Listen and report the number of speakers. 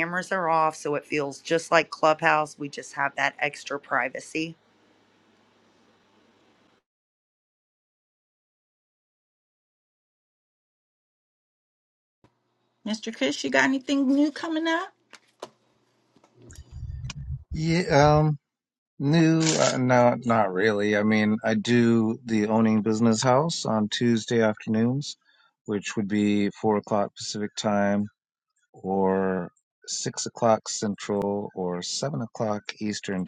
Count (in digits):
3